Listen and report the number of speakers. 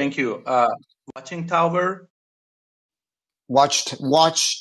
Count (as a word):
two